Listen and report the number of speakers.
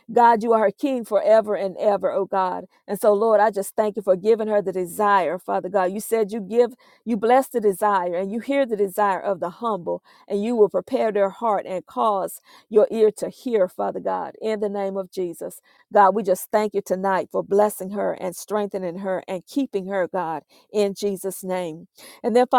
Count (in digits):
1